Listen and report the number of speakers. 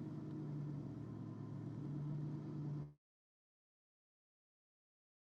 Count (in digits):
0